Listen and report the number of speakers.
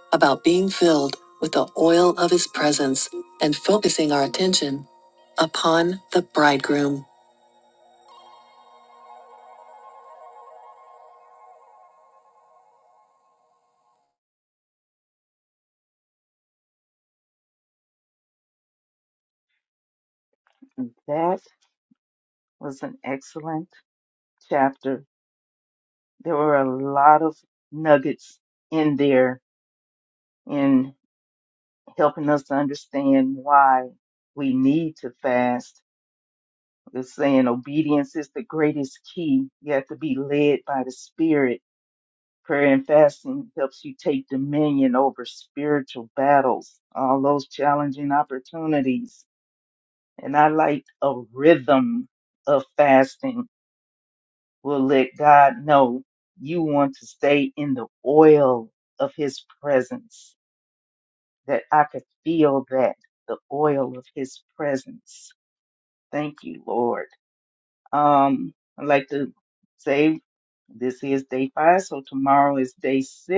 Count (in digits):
2